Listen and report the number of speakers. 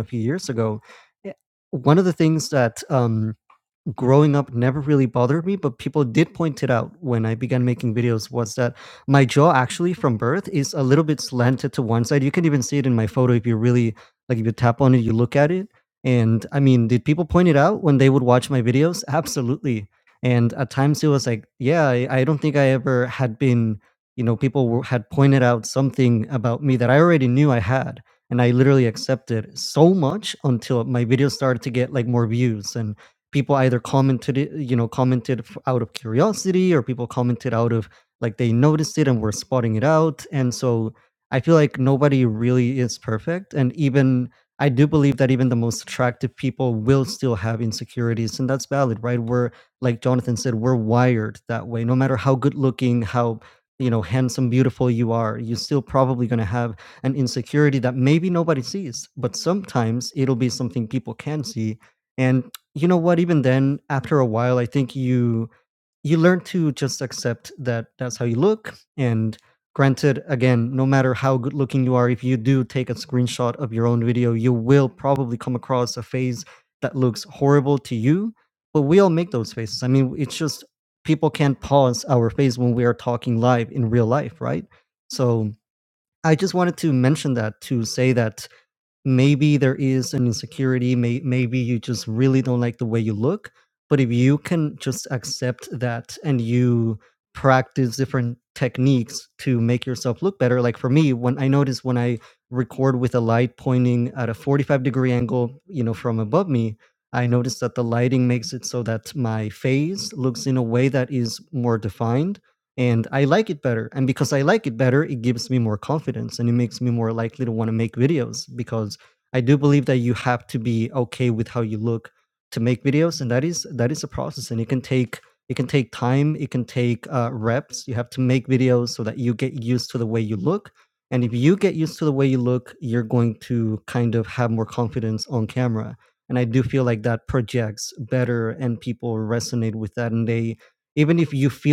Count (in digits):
1